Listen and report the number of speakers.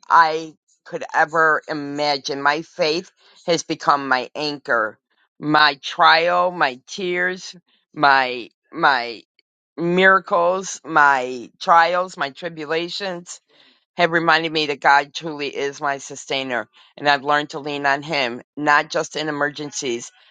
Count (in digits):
1